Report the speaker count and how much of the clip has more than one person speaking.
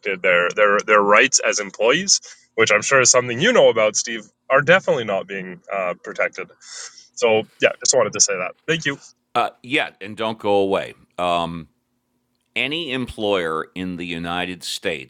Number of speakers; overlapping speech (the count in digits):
2, no overlap